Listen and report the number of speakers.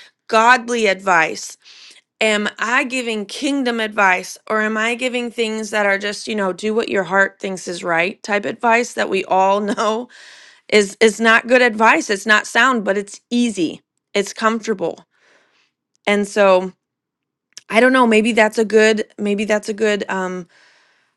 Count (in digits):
1